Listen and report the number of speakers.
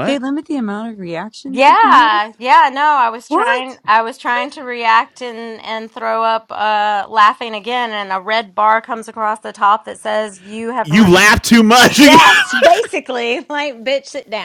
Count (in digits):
3